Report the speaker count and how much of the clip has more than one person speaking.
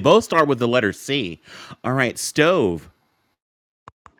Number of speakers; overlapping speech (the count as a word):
one, no overlap